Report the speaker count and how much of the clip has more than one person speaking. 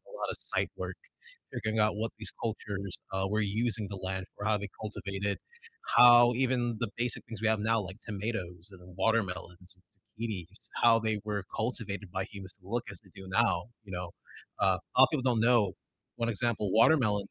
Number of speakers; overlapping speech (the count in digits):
1, no overlap